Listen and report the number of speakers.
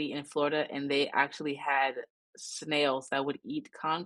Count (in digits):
1